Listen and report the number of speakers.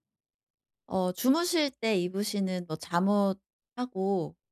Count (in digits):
1